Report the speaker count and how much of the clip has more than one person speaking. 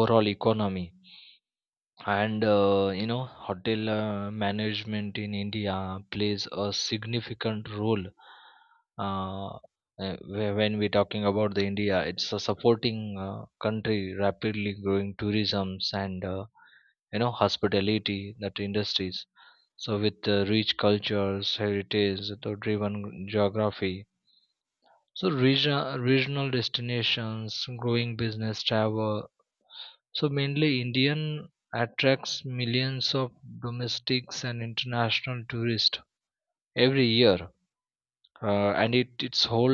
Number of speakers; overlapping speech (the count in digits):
1, no overlap